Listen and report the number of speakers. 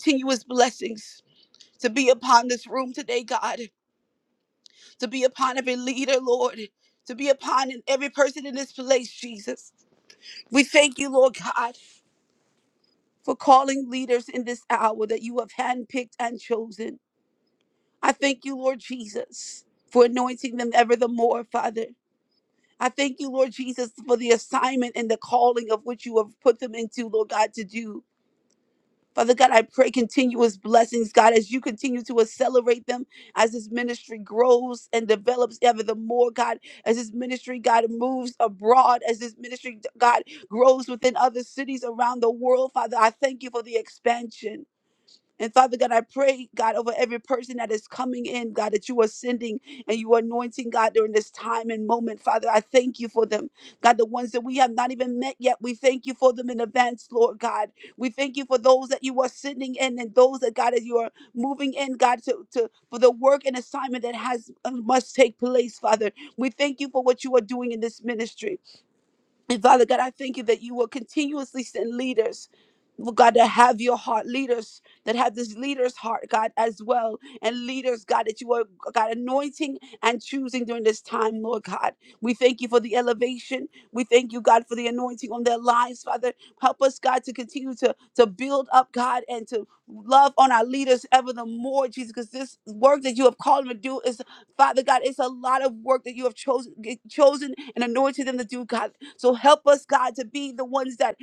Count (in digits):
1